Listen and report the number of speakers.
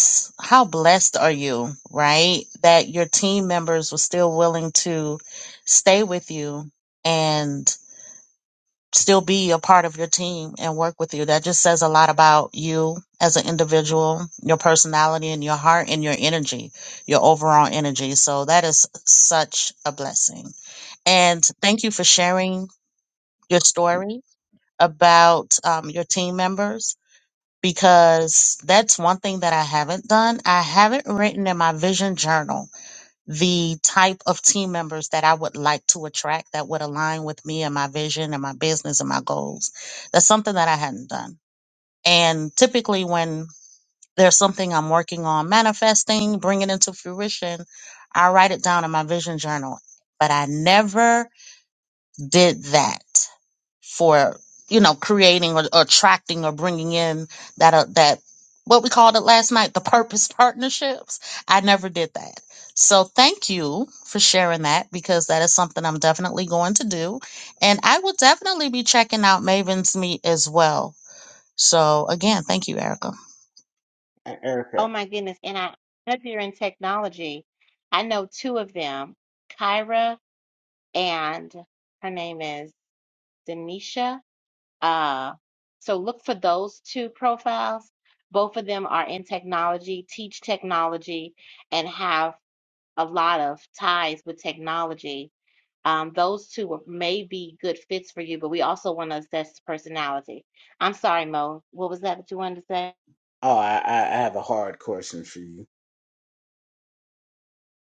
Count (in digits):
3